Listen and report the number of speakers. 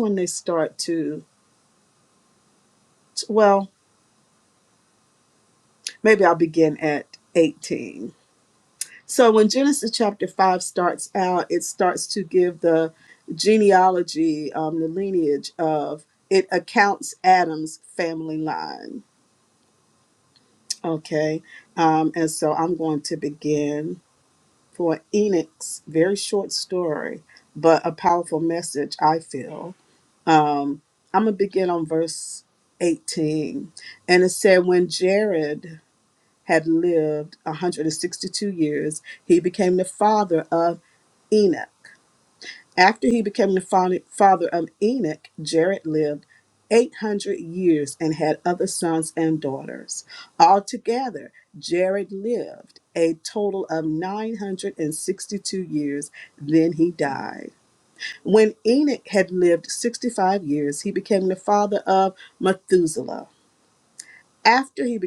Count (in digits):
1